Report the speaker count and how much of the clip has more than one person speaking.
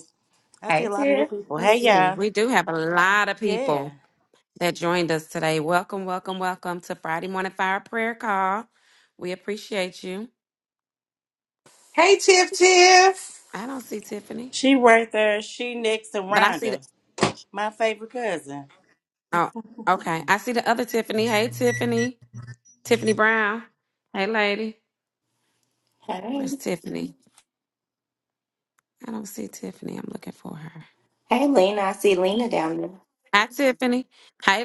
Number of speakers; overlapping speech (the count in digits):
4, about 7%